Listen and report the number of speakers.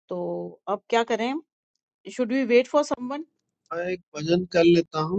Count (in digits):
2